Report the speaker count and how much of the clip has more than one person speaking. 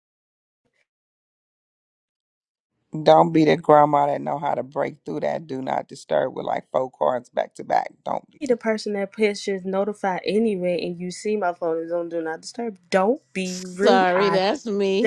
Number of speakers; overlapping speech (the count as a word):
three, about 4%